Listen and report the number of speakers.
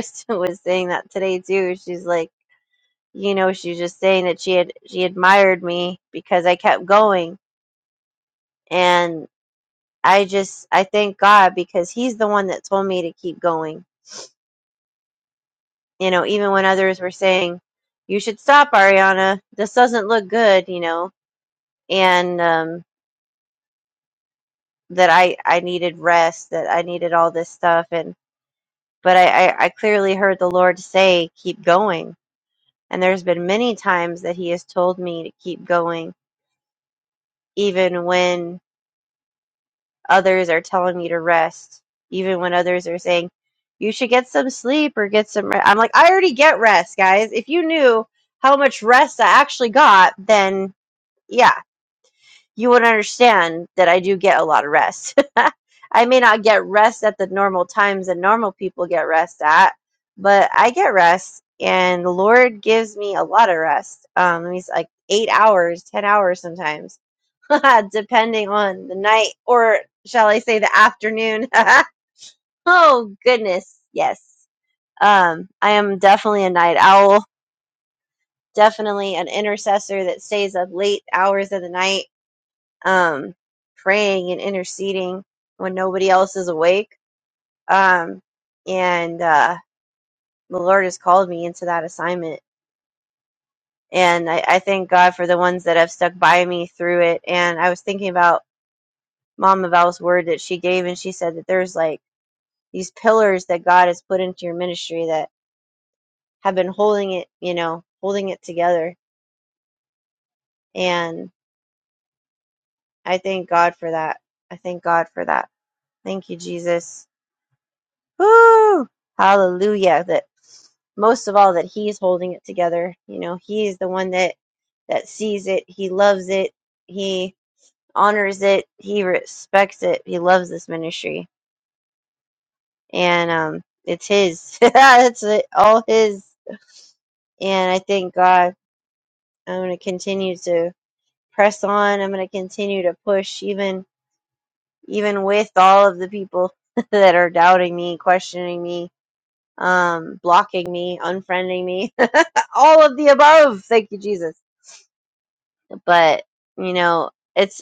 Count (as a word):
one